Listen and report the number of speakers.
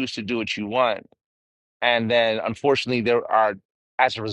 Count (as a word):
one